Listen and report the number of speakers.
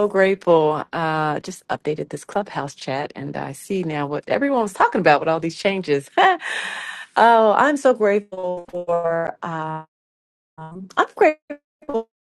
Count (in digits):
1